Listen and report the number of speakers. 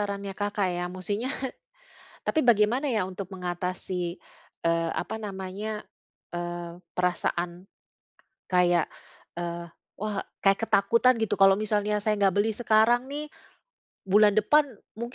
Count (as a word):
one